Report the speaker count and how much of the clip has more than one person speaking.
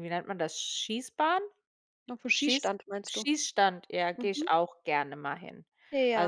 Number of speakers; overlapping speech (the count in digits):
2, about 15%